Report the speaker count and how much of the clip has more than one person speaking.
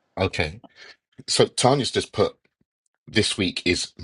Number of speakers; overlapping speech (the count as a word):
one, no overlap